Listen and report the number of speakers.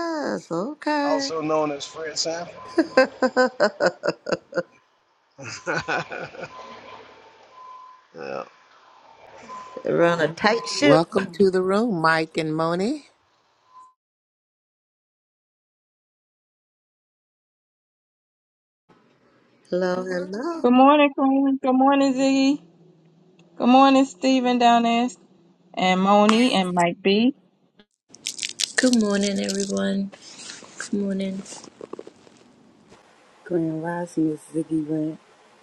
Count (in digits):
6